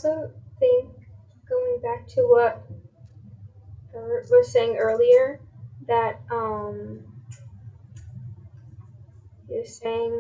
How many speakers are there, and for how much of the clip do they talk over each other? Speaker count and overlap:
one, no overlap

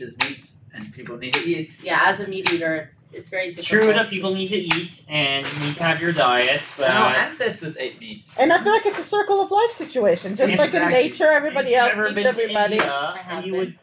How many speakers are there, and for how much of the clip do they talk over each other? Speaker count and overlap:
four, about 31%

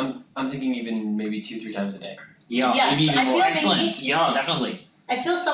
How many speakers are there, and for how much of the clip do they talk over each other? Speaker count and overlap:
three, about 25%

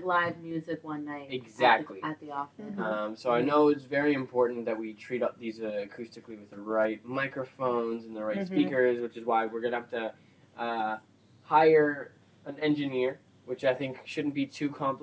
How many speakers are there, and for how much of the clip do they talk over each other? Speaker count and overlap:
two, about 7%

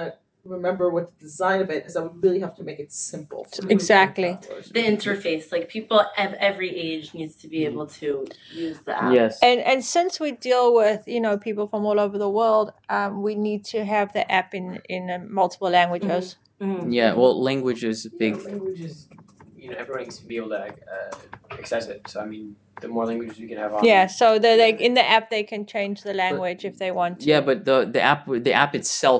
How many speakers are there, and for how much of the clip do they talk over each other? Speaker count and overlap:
five, about 11%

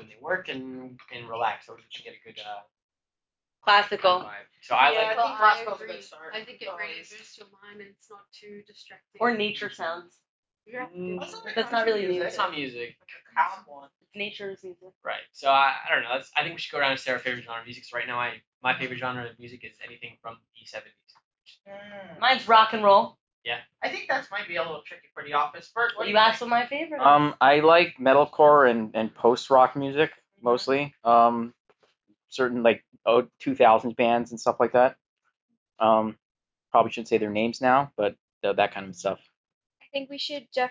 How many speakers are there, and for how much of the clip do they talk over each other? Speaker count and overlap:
six, about 19%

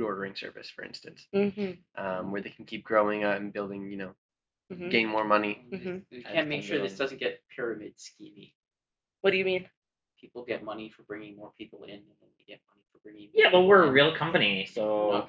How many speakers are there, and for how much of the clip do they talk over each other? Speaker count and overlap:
four, about 14%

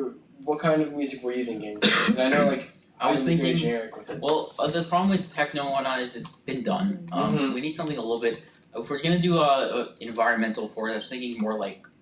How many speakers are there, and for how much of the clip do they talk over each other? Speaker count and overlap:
two, about 9%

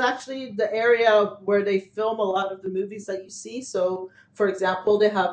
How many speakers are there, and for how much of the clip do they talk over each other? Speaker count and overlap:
one, no overlap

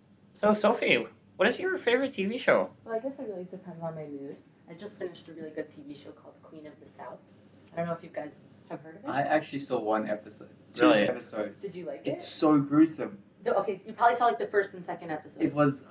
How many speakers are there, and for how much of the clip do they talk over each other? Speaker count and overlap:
three, about 5%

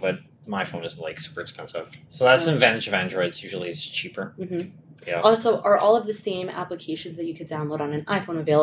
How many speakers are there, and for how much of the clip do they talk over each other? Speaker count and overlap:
two, about 3%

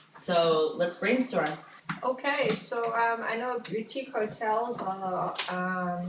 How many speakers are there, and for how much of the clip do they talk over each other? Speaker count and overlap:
two, no overlap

